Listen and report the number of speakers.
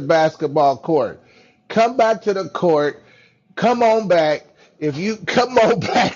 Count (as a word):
one